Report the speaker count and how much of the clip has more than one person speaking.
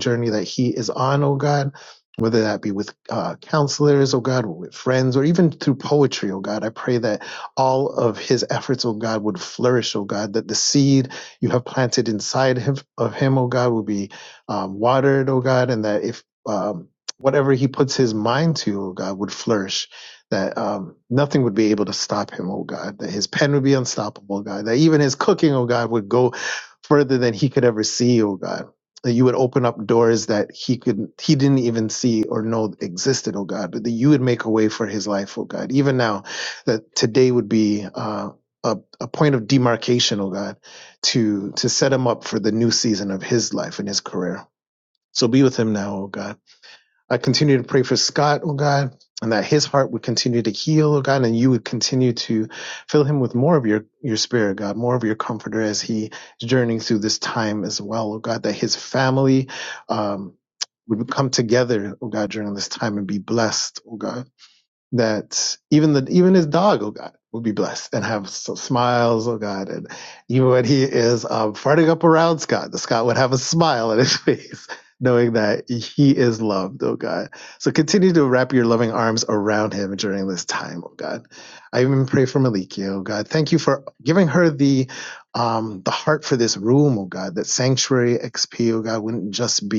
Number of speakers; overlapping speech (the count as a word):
one, no overlap